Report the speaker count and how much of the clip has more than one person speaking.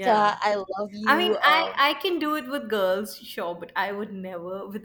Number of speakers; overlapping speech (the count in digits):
2, about 22%